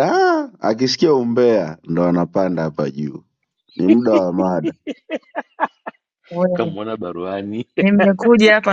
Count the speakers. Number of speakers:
three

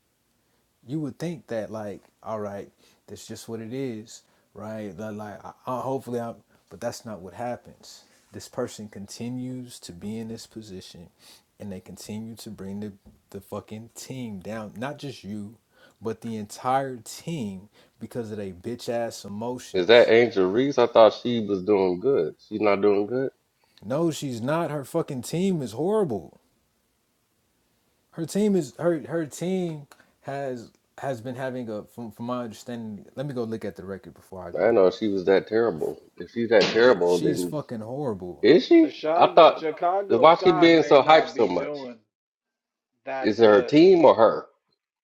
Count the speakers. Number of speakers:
three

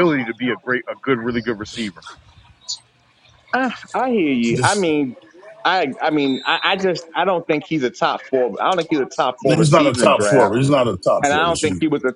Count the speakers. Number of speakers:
three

